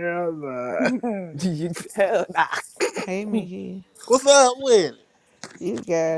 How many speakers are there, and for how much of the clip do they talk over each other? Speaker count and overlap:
3, no overlap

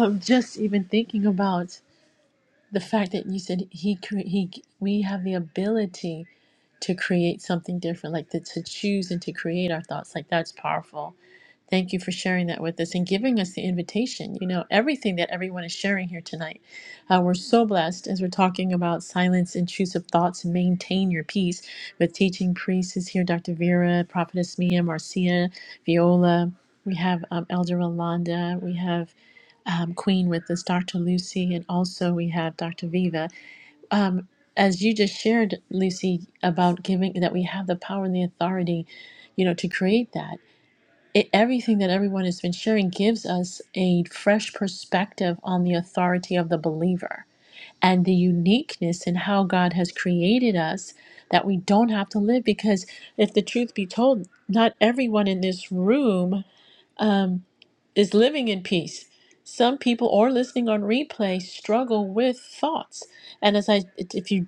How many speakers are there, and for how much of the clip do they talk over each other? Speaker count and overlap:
1, no overlap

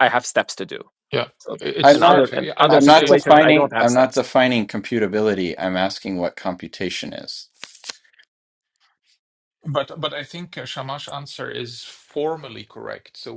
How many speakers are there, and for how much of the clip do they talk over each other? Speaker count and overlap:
3, about 18%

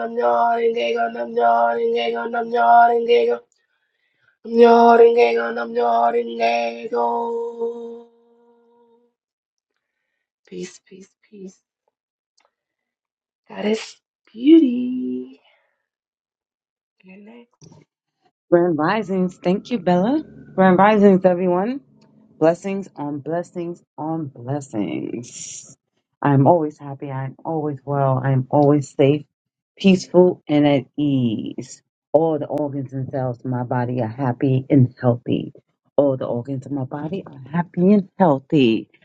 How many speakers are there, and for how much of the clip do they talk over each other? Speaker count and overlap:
2, no overlap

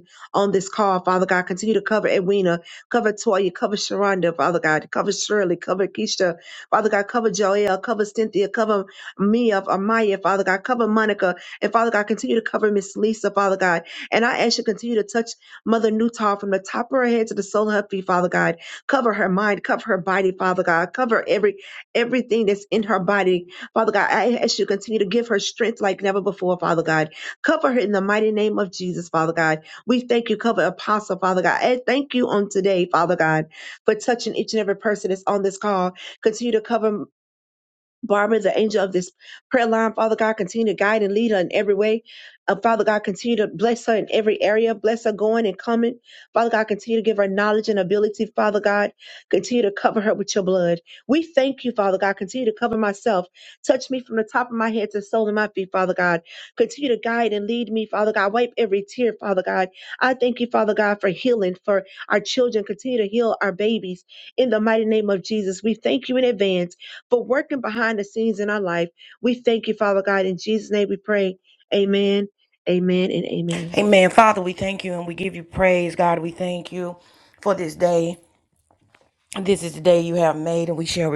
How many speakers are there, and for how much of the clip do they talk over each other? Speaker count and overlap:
2, no overlap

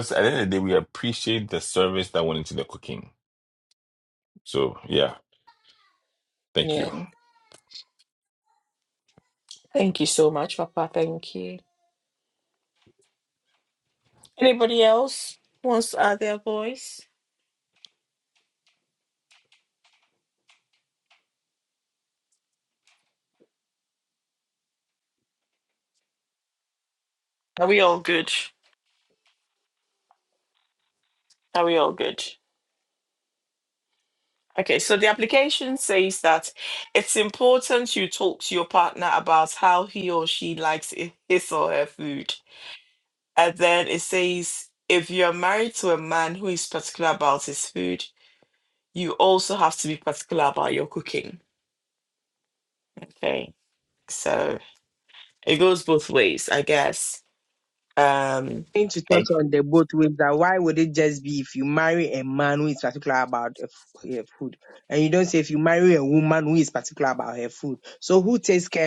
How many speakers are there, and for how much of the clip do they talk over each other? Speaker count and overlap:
3, about 1%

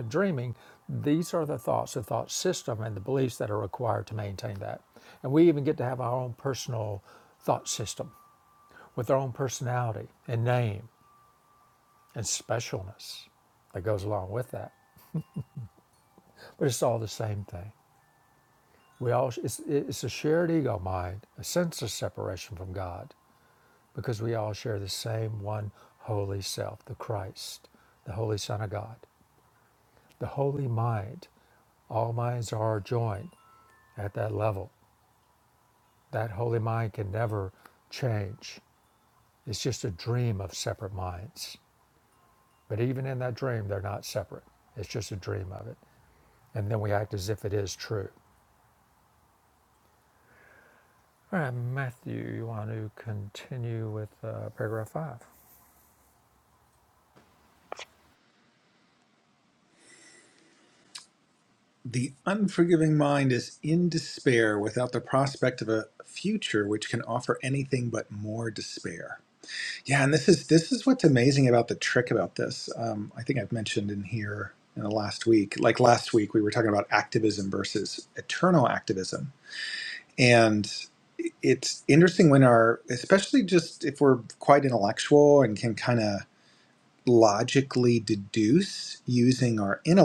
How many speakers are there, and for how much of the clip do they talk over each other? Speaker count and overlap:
2, no overlap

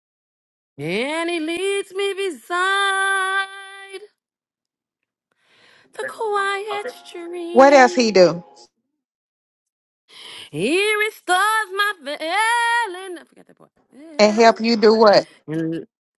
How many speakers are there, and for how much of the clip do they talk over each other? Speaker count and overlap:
2, about 5%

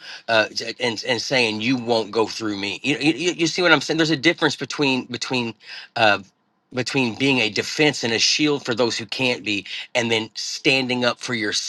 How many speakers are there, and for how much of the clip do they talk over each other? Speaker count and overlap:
1, no overlap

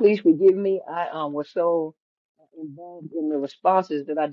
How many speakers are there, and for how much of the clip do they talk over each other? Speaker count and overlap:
1, no overlap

